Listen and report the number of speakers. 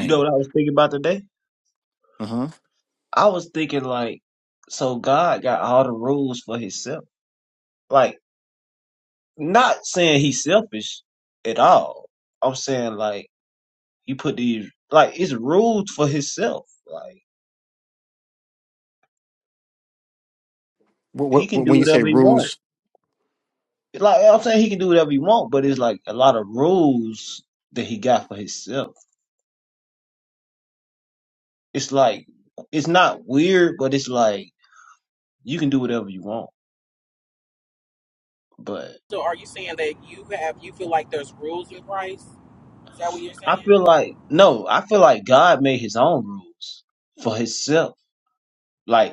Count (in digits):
3